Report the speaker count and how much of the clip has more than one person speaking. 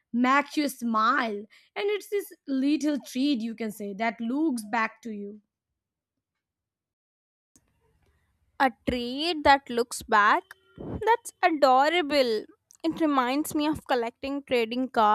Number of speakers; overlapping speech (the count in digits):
2, no overlap